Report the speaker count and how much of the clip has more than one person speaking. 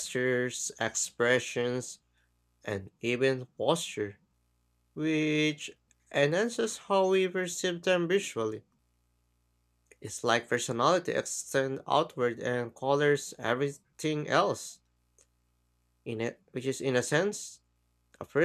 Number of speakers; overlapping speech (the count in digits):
1, no overlap